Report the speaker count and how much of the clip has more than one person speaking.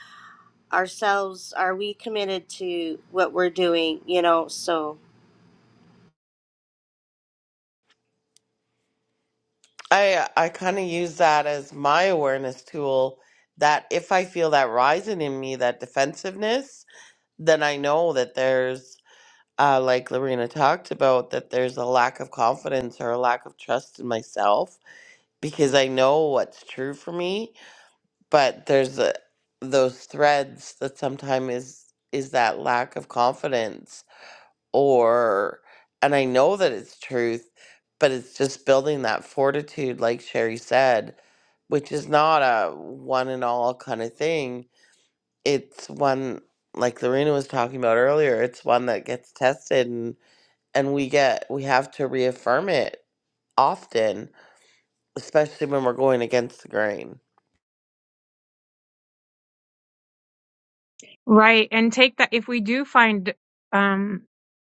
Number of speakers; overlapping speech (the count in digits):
3, no overlap